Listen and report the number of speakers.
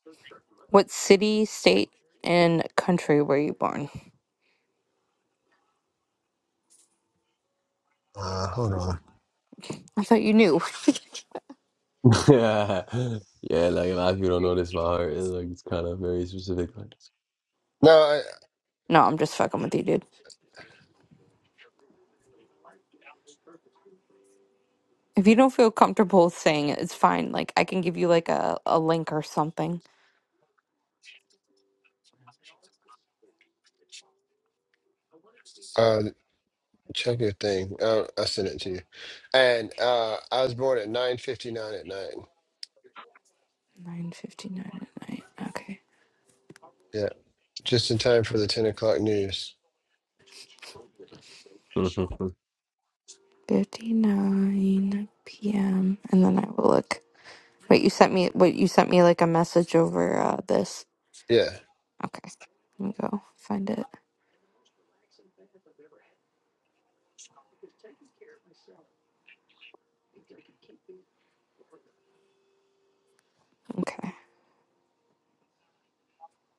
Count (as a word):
three